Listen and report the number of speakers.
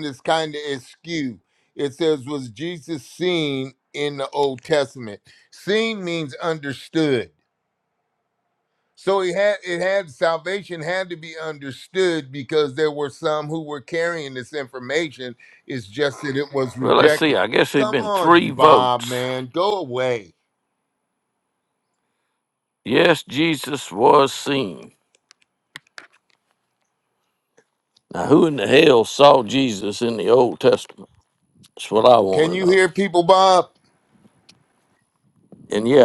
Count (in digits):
2